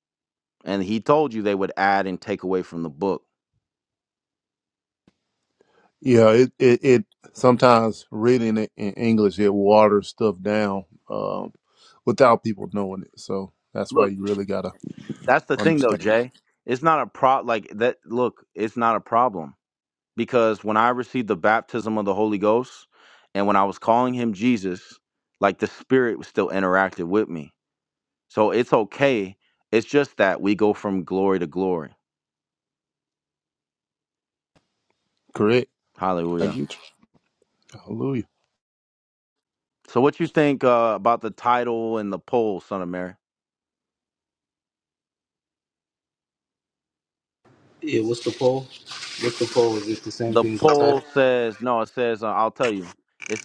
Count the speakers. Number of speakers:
3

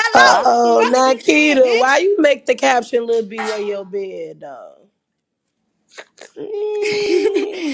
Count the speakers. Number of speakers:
3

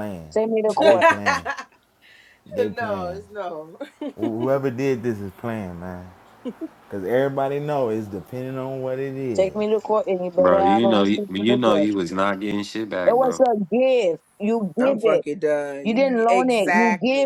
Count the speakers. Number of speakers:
4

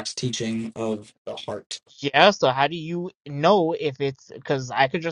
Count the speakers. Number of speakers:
2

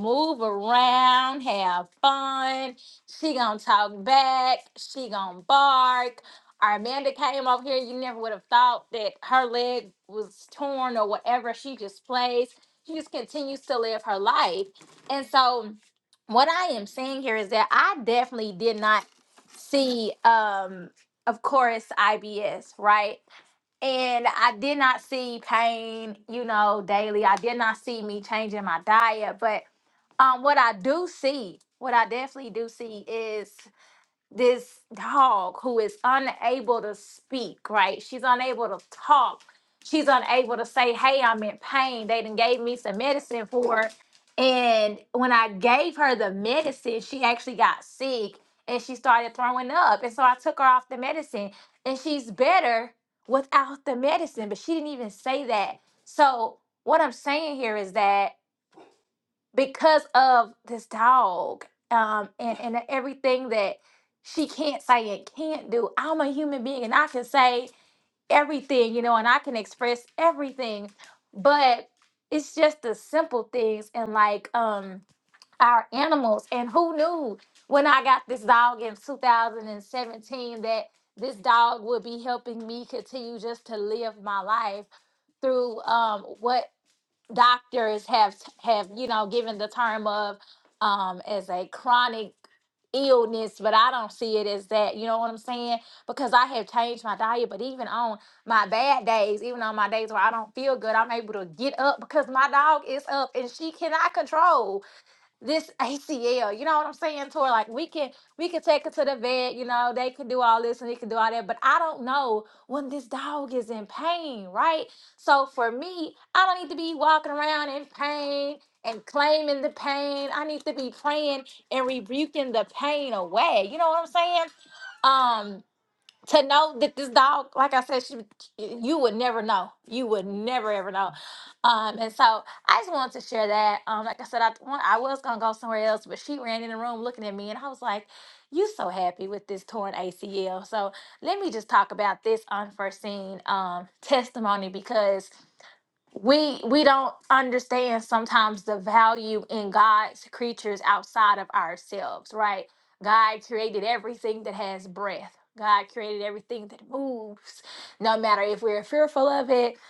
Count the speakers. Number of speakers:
1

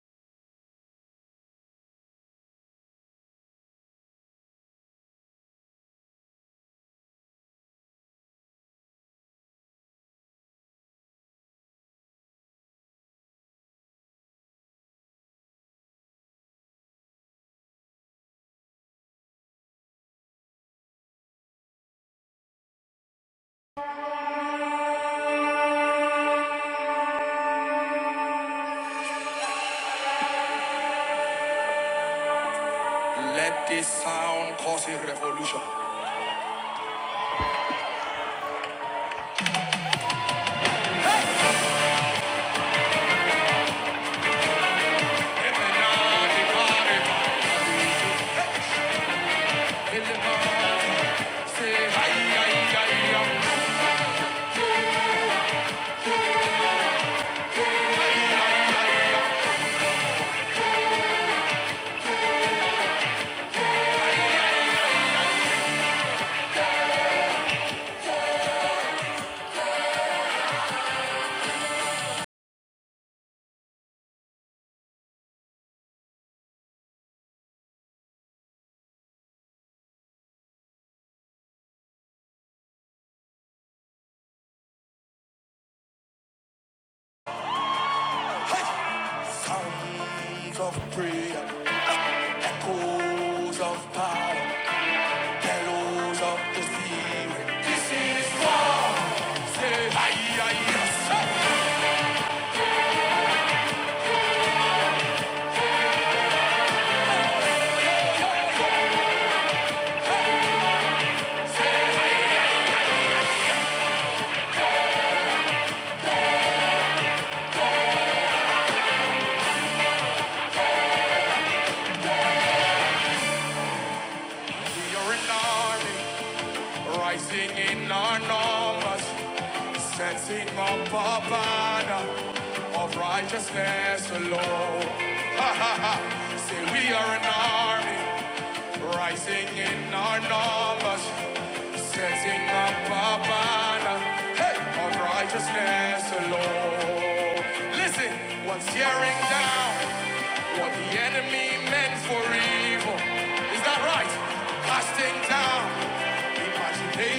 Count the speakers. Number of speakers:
1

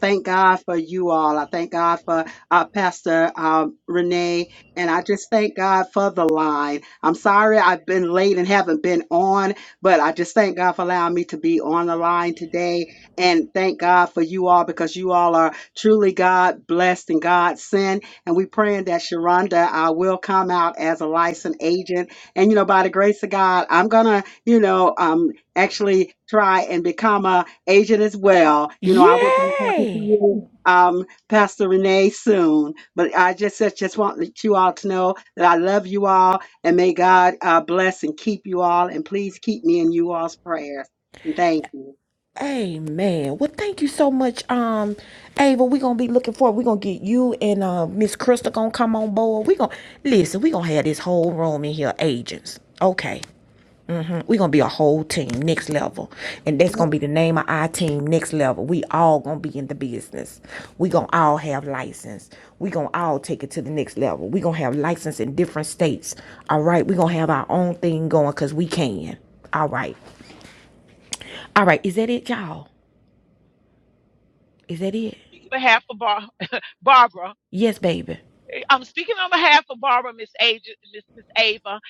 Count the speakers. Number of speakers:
3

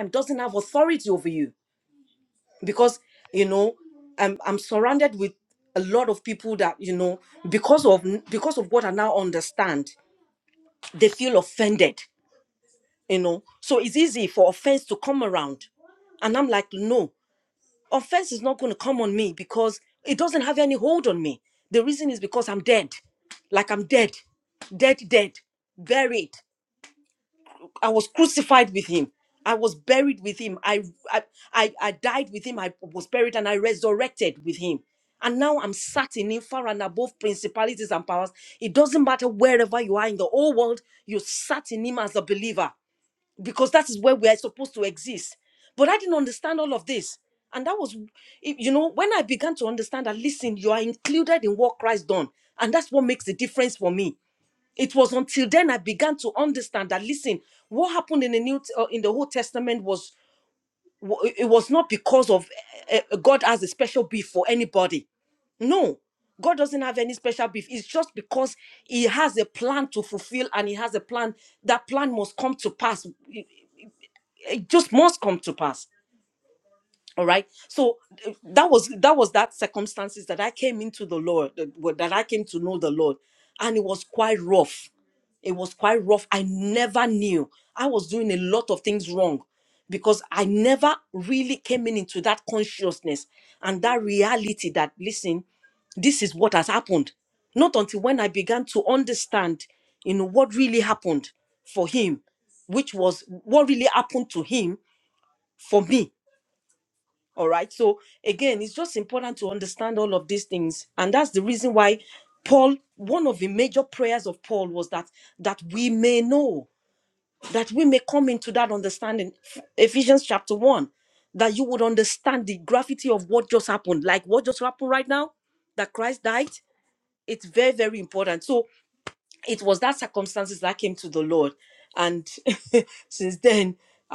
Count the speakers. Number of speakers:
1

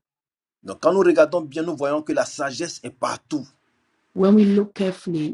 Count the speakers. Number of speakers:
2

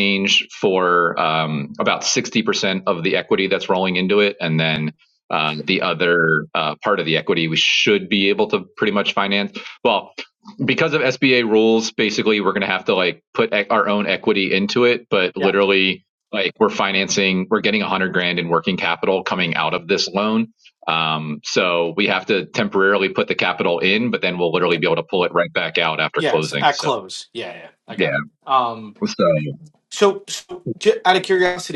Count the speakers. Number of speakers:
2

